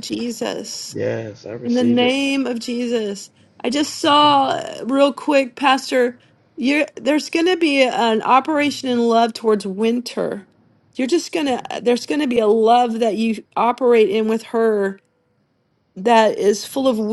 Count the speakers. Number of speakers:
two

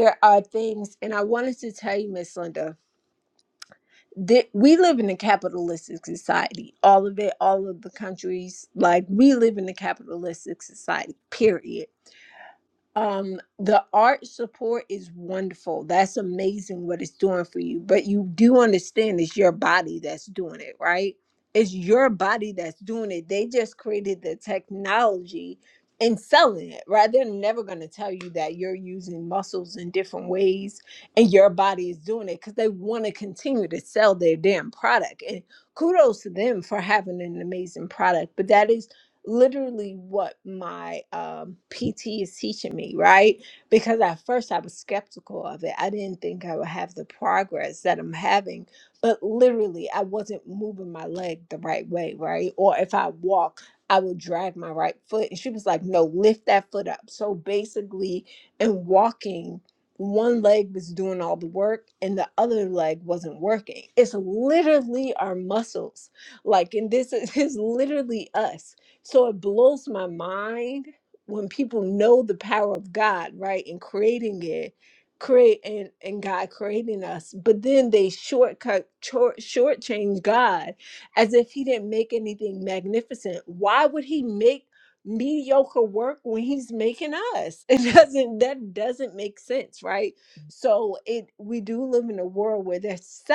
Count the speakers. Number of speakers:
one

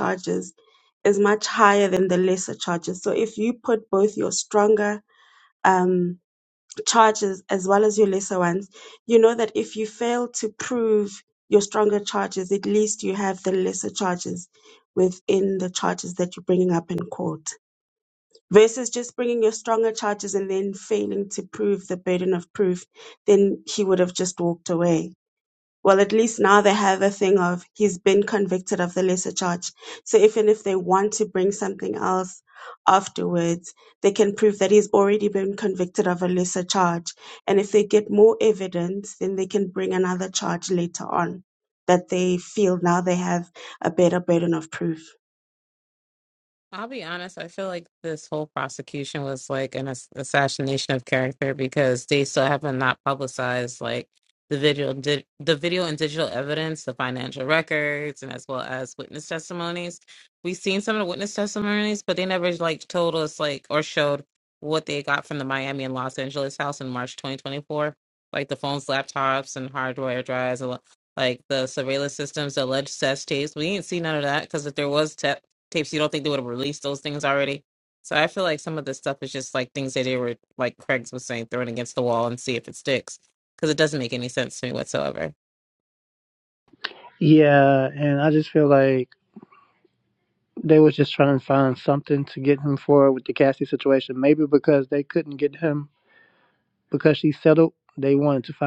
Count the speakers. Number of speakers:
three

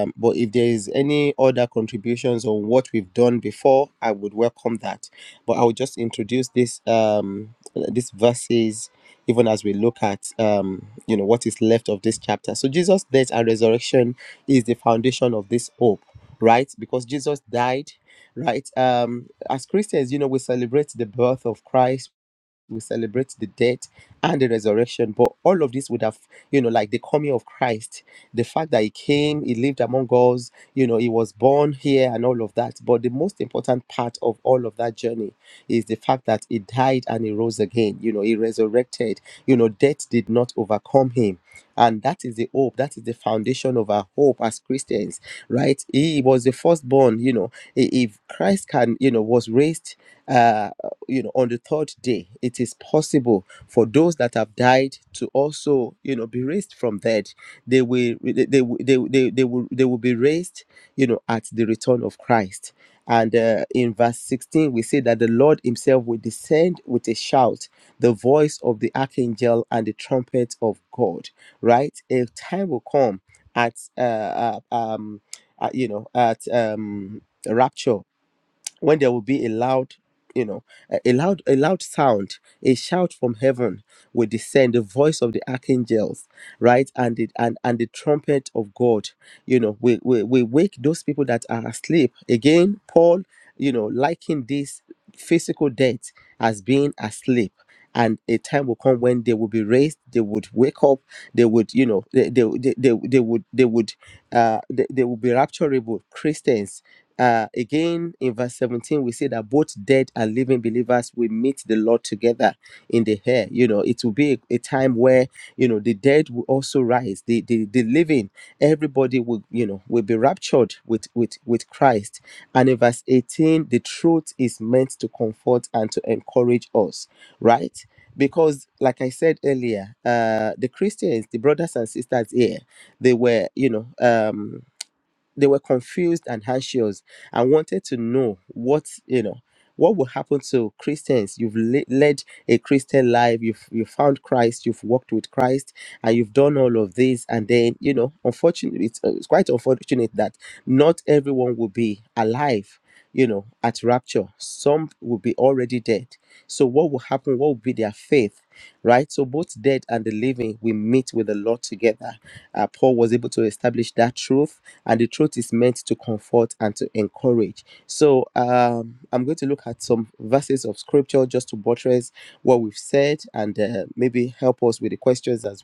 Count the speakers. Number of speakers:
one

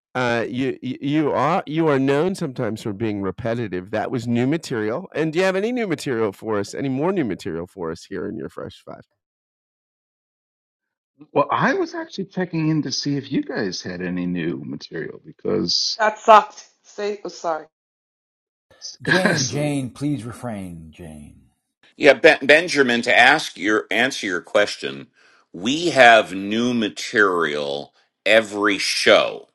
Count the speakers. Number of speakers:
five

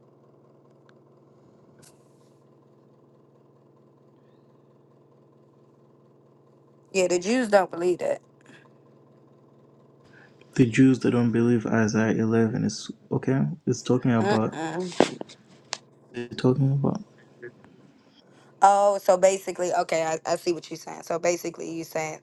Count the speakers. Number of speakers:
two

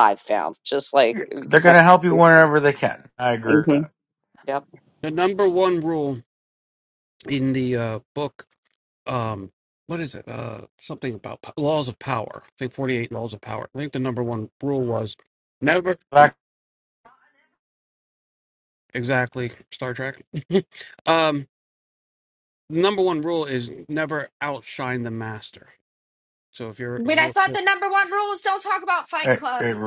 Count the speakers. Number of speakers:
four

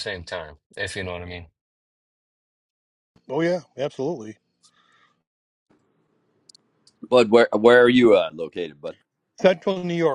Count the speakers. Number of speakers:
three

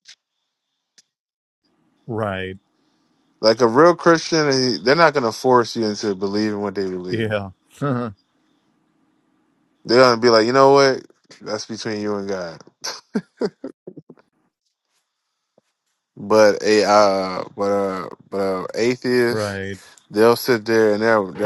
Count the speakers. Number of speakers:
two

